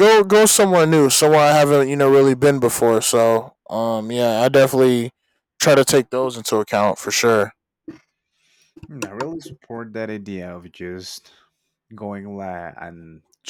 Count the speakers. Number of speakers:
two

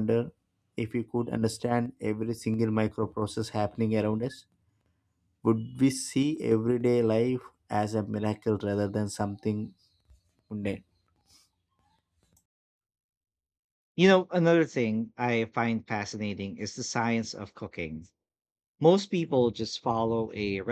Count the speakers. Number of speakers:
two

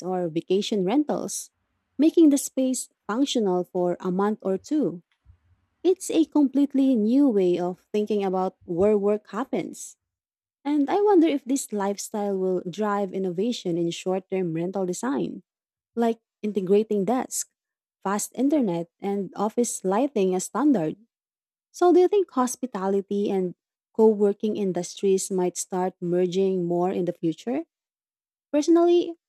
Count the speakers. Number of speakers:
one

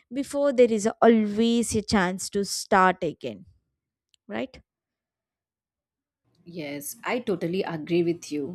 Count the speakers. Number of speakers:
two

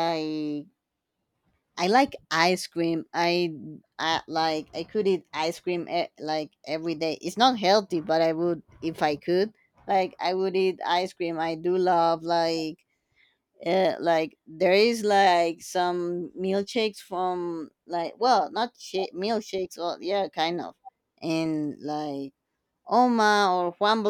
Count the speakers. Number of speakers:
one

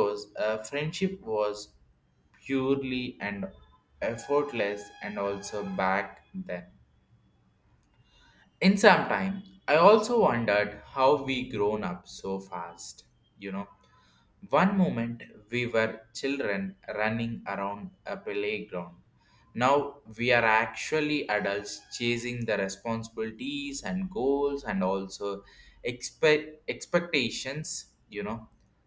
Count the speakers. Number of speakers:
one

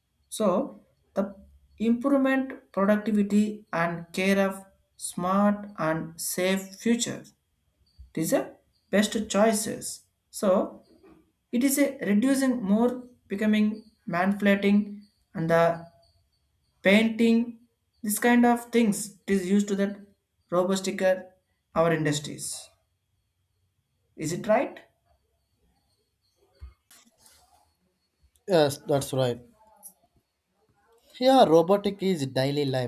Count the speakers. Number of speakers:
two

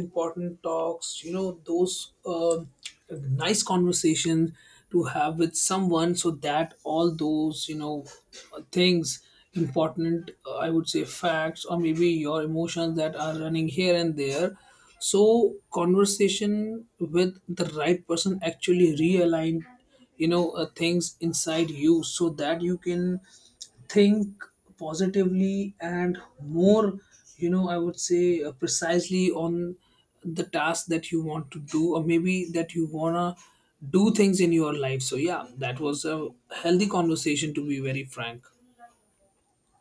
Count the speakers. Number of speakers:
one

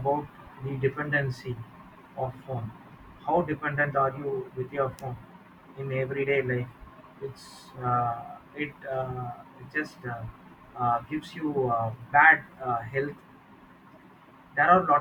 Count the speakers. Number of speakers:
one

